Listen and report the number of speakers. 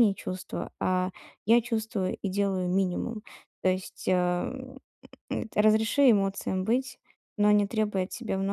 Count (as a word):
one